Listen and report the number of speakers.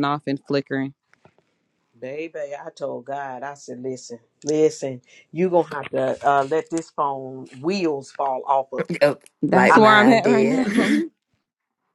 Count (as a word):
three